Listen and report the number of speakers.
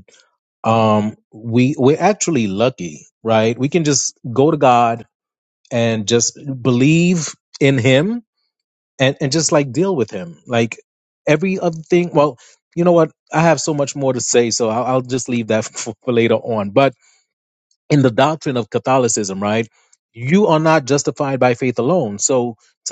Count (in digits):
1